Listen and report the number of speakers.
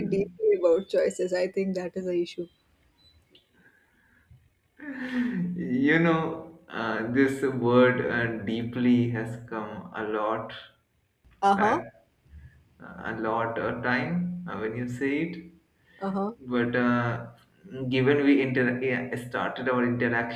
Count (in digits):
2